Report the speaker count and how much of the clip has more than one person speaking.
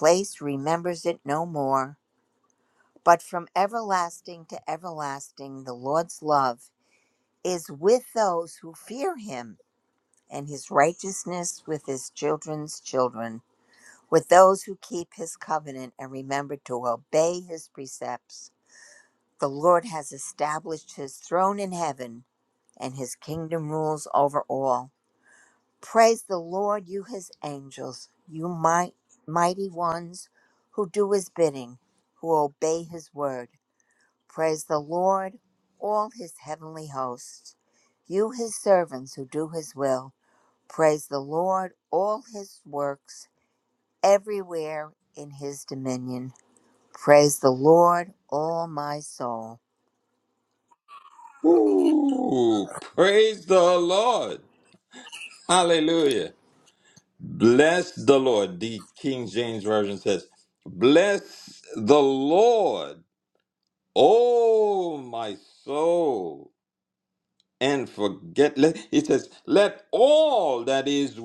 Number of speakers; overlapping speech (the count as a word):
two, no overlap